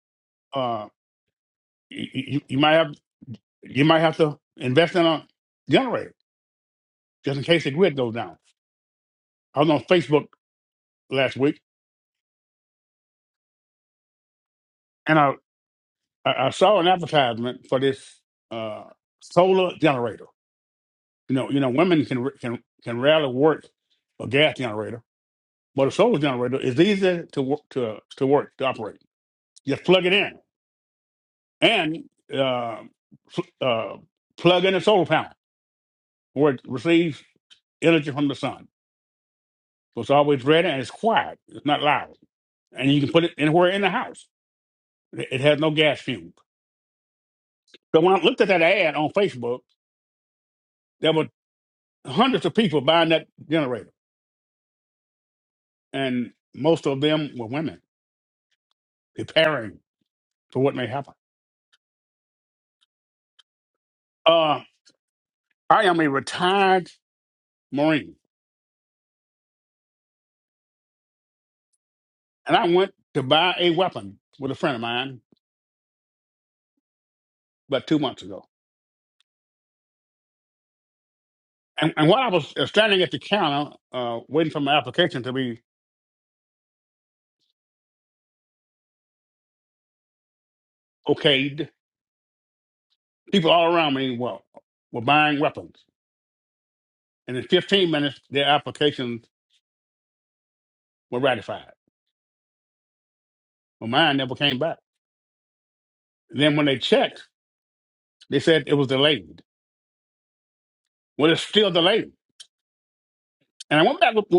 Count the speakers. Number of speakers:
1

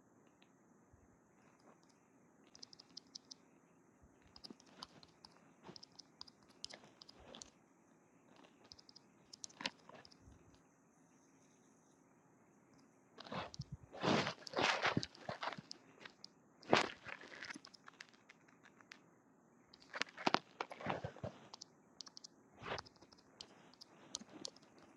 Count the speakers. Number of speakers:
0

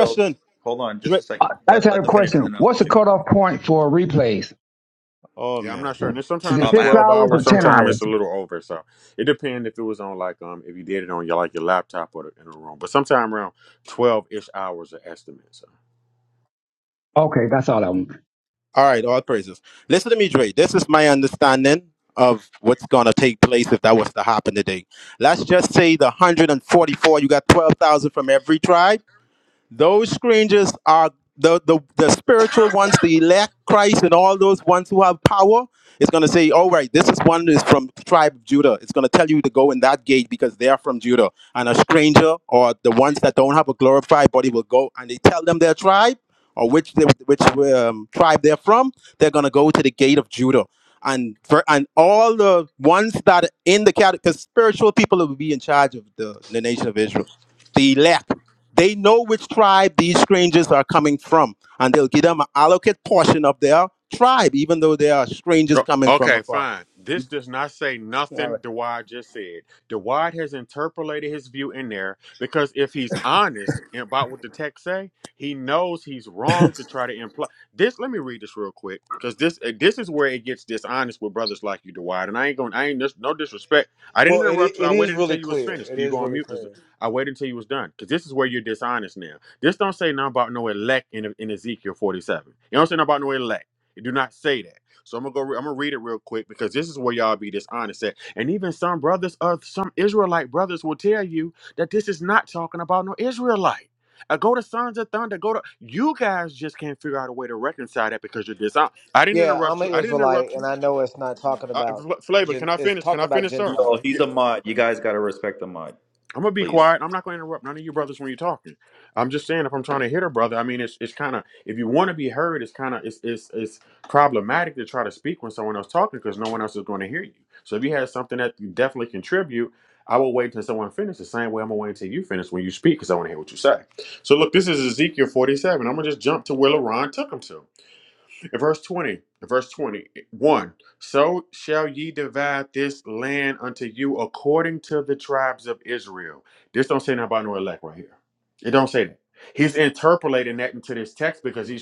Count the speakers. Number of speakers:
5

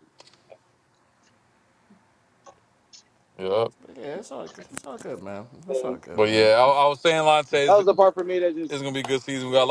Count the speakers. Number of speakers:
3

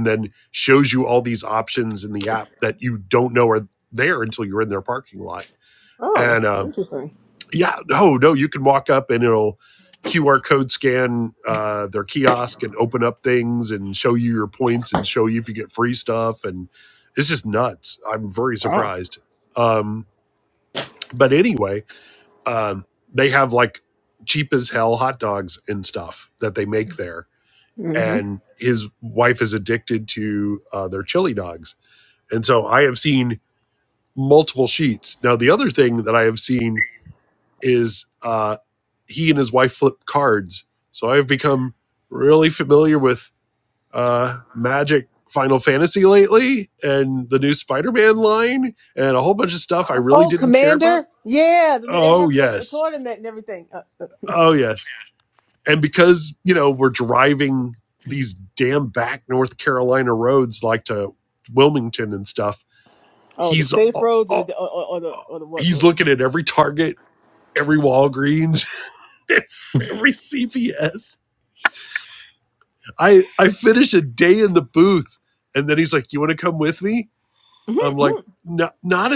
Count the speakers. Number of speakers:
2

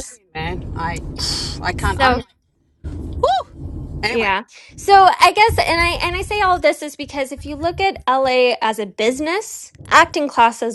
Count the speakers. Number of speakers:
2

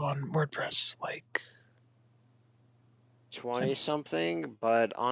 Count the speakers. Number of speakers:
2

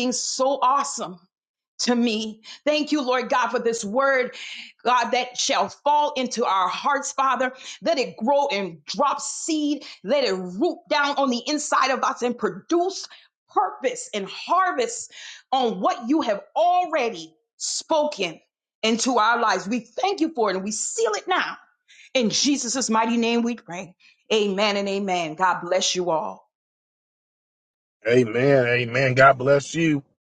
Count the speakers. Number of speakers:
2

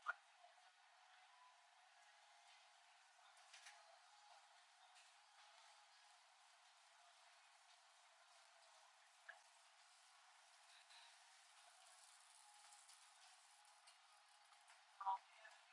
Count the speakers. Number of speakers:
0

